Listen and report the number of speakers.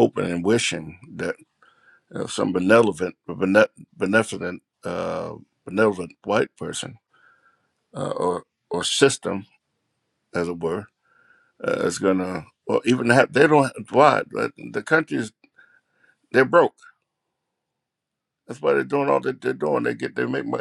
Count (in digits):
1